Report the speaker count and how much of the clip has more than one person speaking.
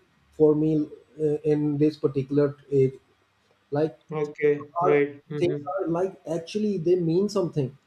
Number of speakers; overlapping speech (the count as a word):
two, about 6%